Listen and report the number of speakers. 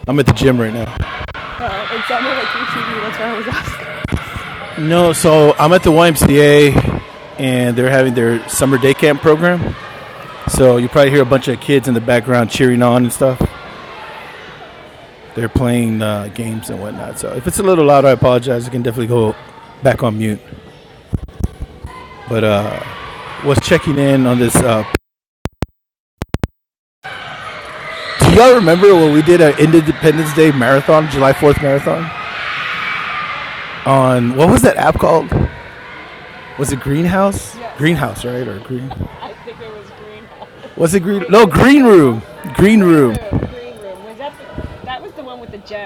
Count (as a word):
three